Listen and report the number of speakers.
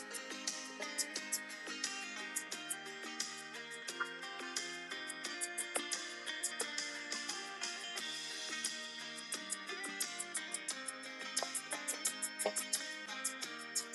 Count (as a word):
zero